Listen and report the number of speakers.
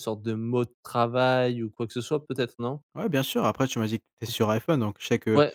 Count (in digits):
2